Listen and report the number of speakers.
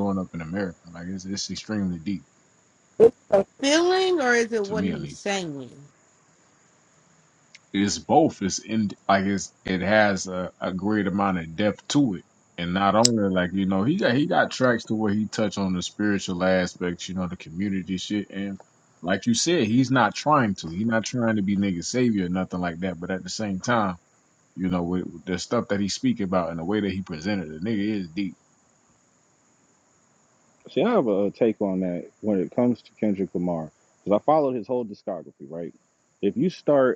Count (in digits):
3